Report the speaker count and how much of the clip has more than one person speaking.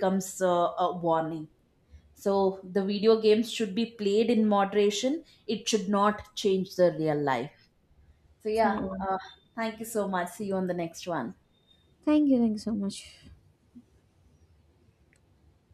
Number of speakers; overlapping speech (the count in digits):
2, about 1%